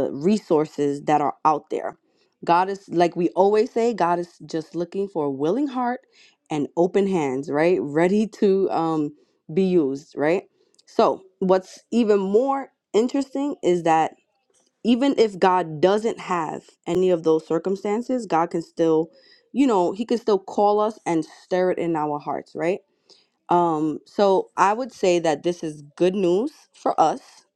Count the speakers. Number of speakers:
1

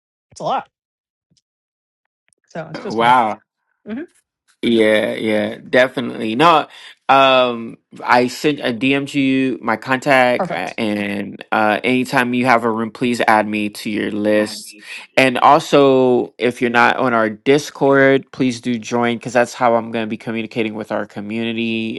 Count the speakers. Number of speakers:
2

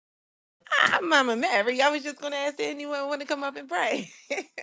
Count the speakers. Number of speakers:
1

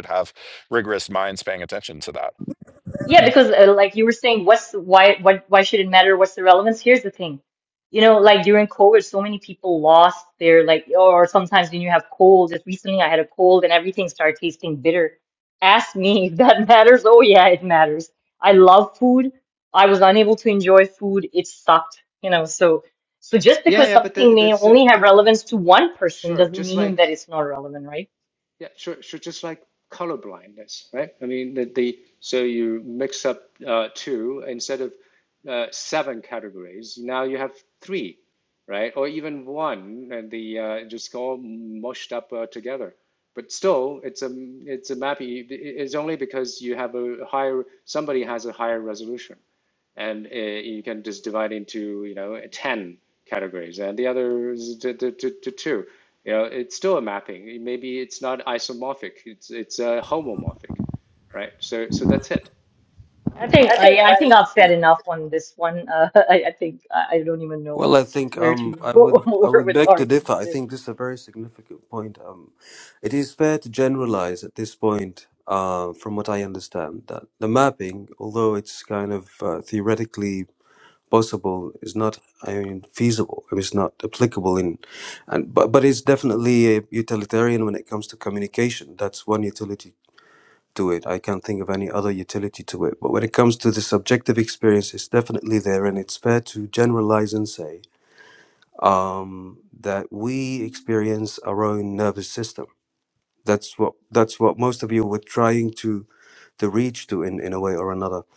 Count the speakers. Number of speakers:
4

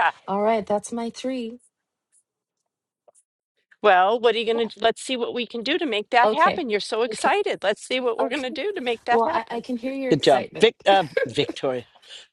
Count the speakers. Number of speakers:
3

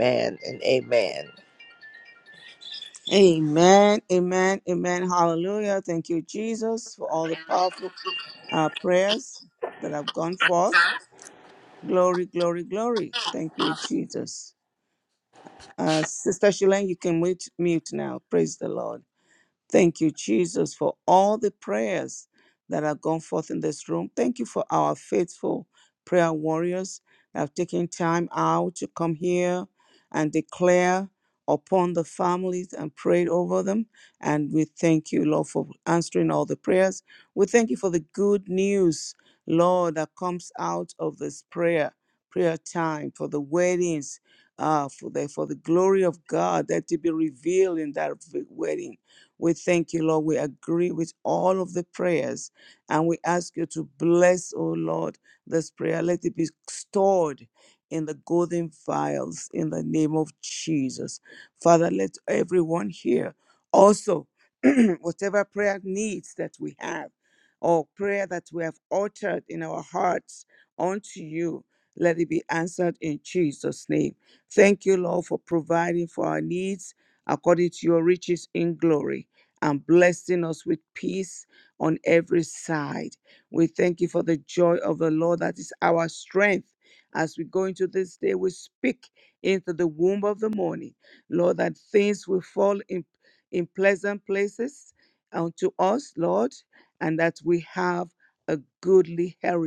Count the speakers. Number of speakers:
2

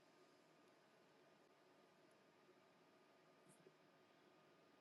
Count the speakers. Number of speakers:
0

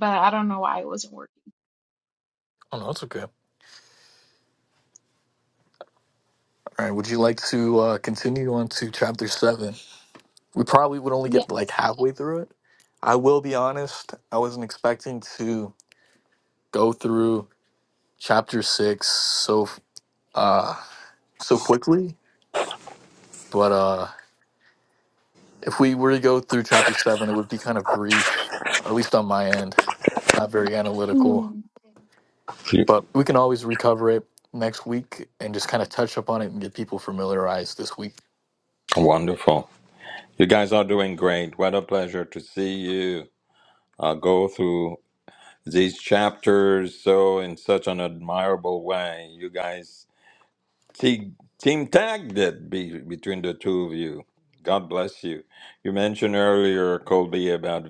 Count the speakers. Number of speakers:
3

